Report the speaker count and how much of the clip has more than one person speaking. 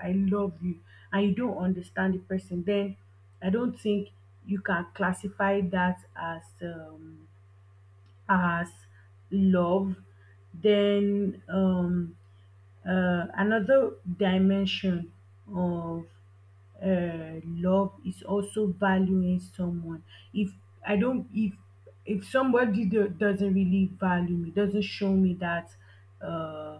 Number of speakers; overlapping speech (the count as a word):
one, no overlap